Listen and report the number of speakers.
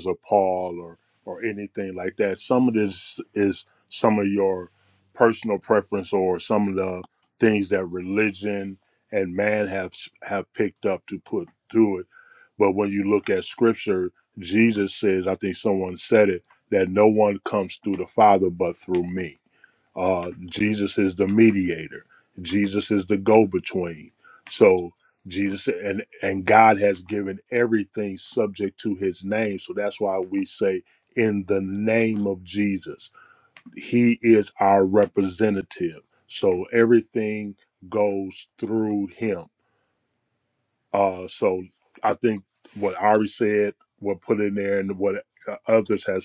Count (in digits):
1